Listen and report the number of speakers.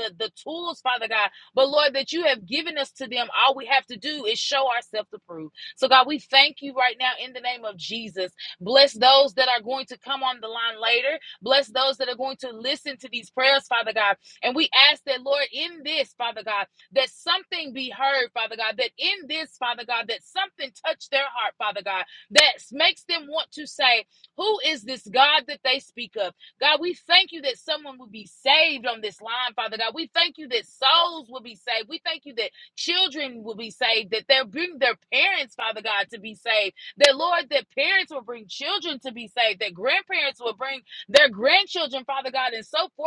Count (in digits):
1